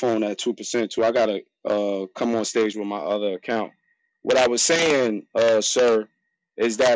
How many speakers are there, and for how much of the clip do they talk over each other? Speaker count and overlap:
one, no overlap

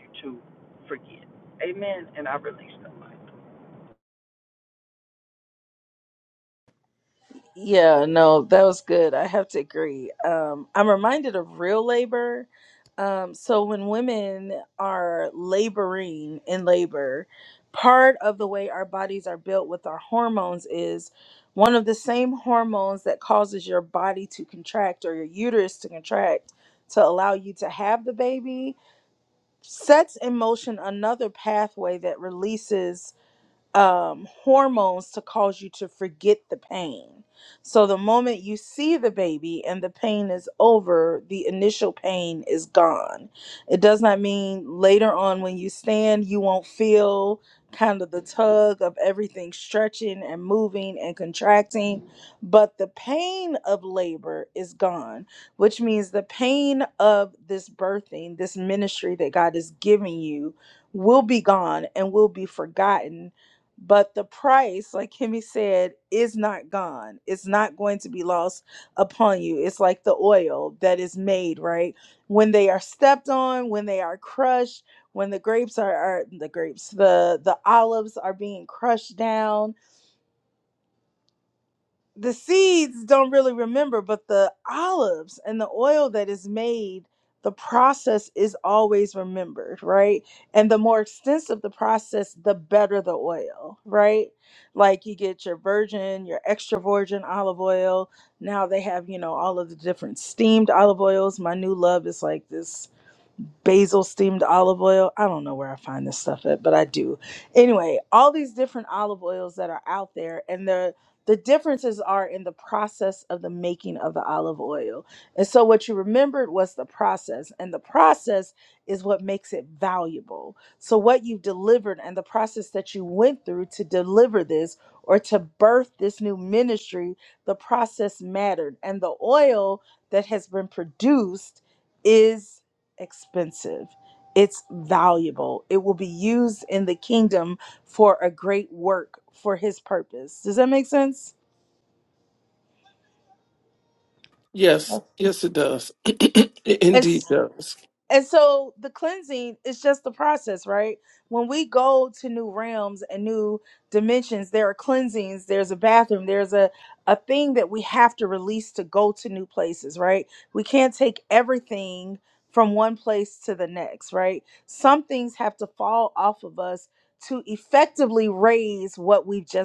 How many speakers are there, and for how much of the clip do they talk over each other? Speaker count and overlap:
three, under 1%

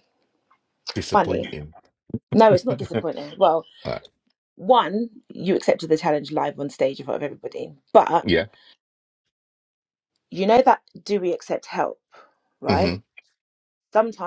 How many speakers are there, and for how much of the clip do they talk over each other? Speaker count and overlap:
two, about 5%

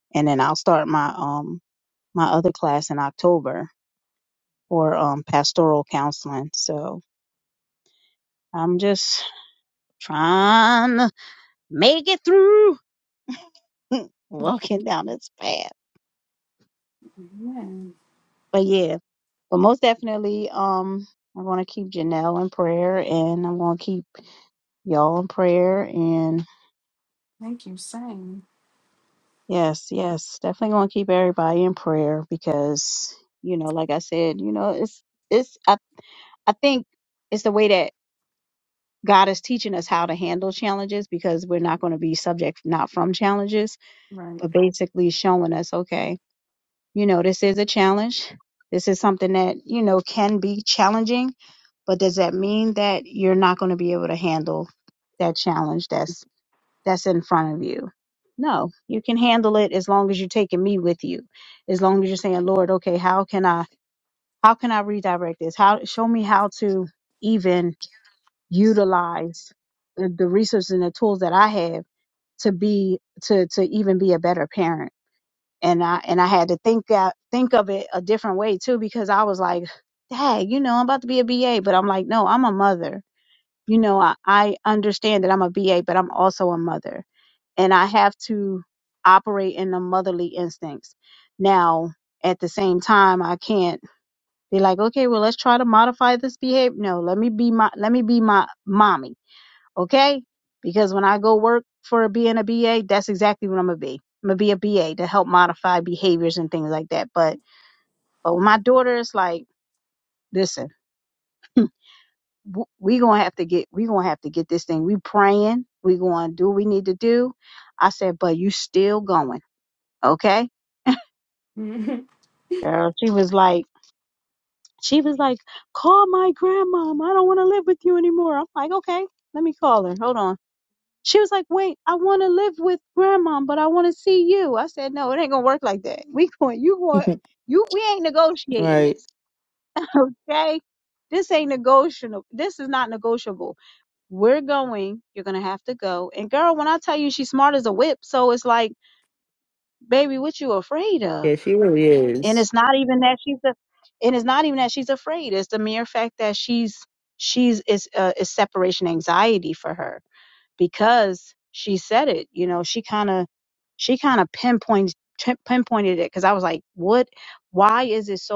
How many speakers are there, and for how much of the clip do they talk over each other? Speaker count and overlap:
three, under 1%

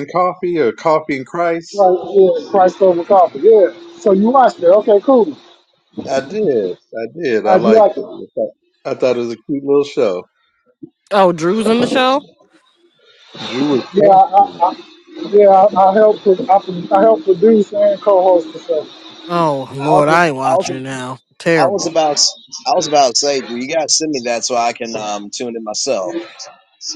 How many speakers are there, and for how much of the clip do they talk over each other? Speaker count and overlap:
four, about 9%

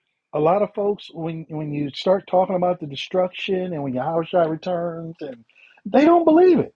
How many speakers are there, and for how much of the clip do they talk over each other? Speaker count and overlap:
one, no overlap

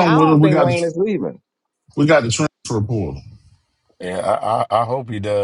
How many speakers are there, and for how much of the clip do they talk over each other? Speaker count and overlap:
three, about 15%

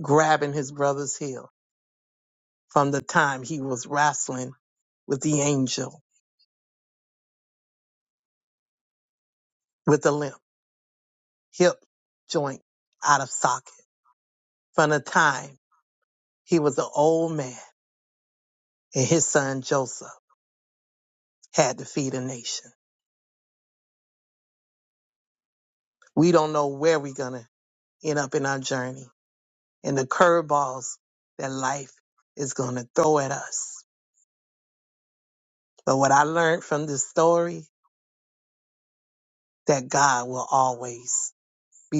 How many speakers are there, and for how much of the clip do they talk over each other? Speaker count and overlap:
one, no overlap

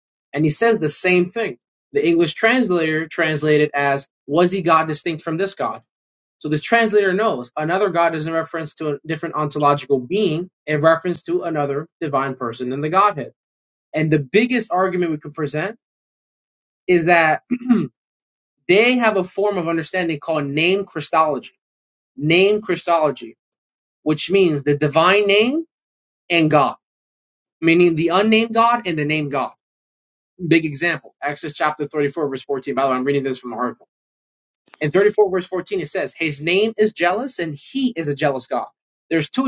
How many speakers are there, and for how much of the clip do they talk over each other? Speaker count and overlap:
one, no overlap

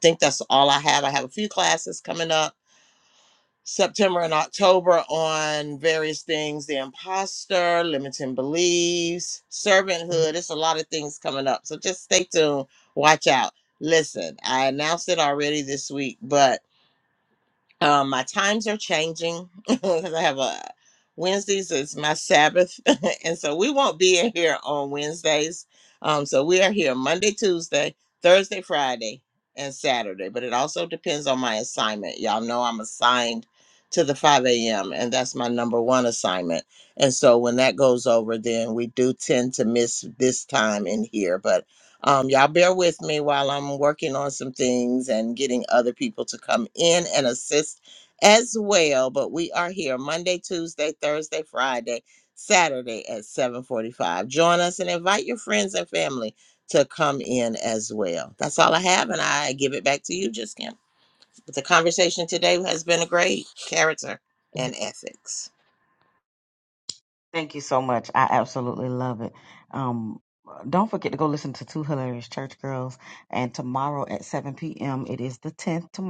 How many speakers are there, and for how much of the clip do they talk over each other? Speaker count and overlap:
two, no overlap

